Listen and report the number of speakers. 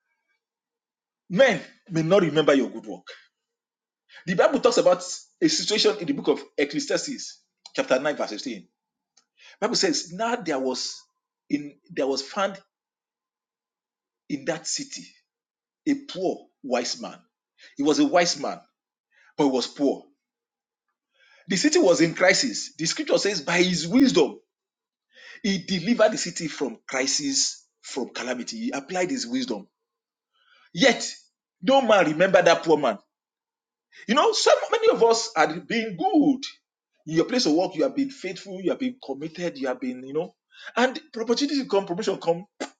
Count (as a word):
one